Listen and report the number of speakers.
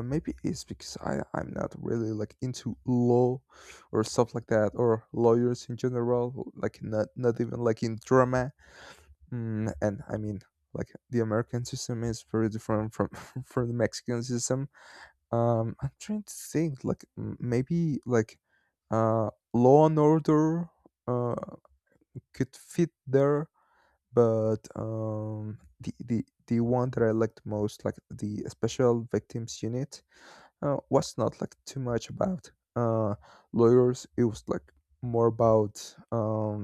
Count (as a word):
one